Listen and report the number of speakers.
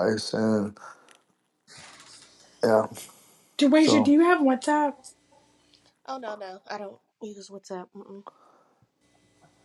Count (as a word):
three